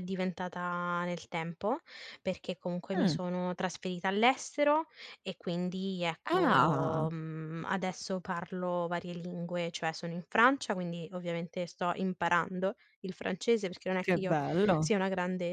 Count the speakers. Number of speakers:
two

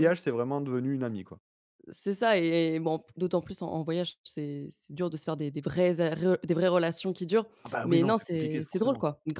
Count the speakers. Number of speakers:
two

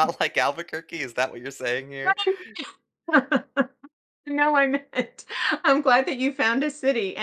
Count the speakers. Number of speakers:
two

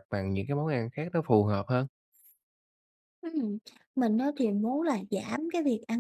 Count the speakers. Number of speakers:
two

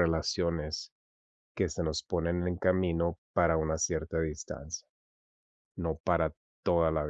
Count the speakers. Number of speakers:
one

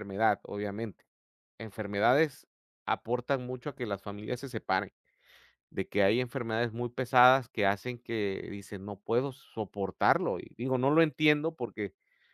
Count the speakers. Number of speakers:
one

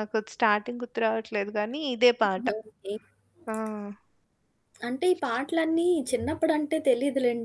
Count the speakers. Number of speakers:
two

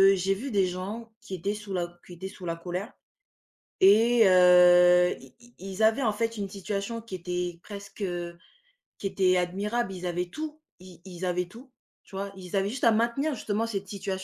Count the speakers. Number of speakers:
one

